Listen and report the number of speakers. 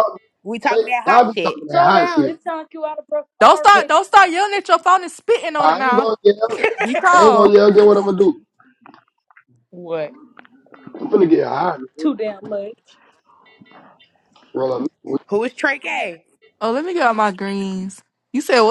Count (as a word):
four